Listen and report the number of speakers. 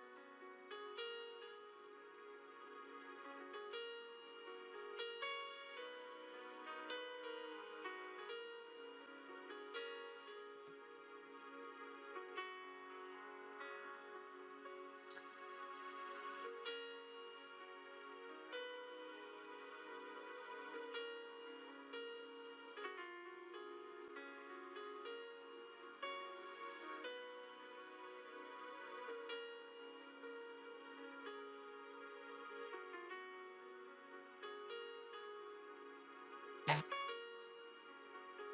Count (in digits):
0